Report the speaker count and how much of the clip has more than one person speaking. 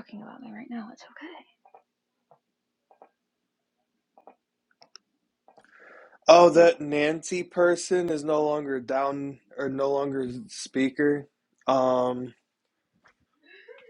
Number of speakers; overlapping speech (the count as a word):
two, about 1%